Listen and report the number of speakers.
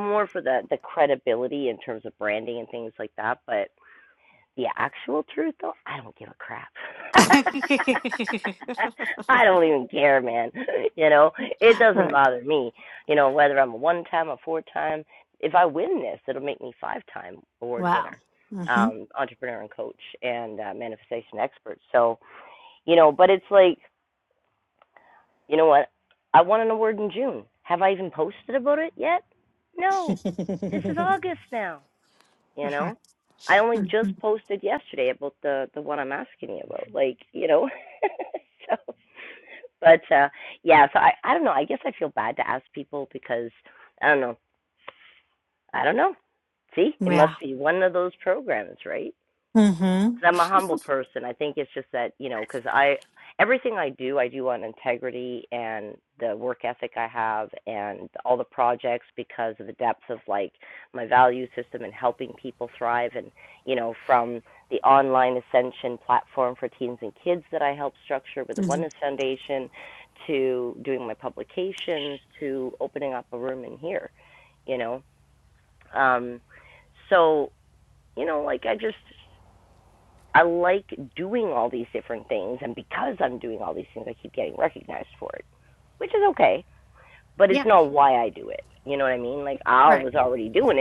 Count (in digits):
2